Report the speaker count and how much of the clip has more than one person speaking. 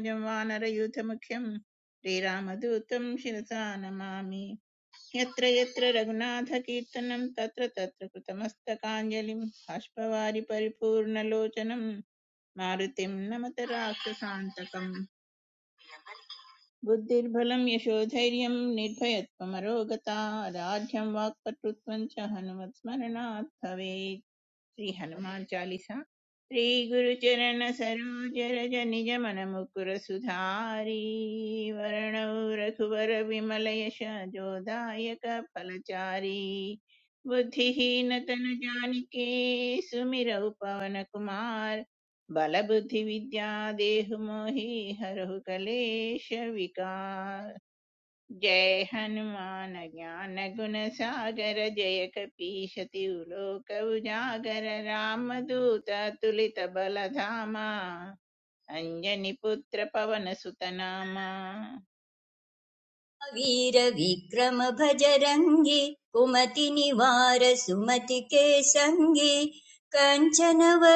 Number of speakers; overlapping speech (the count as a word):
two, no overlap